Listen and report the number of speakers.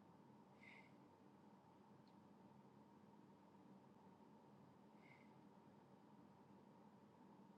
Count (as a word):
zero